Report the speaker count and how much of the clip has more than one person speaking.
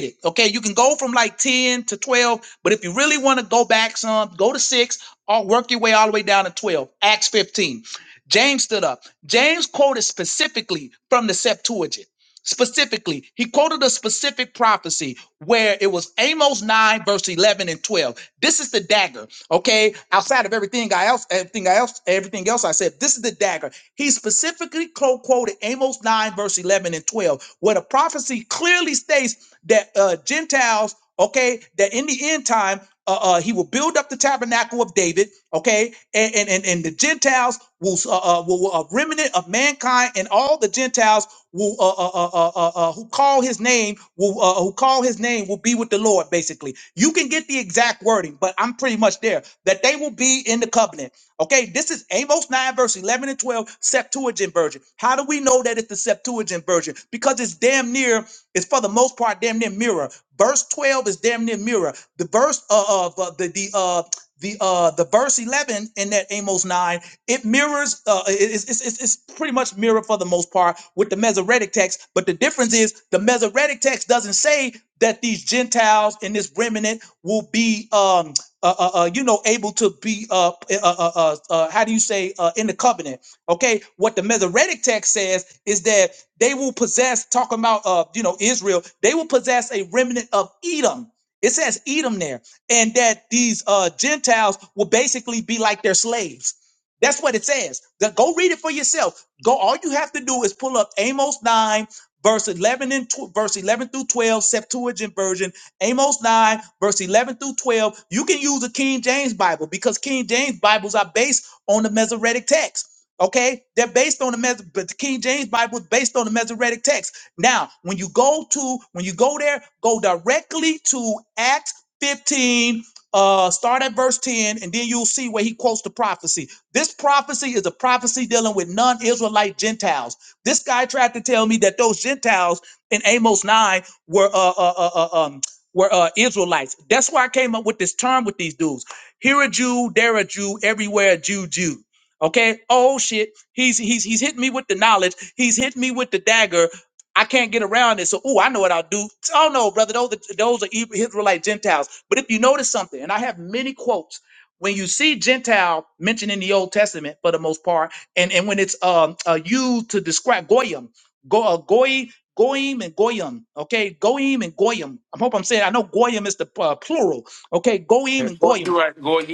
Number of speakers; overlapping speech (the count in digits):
2, under 1%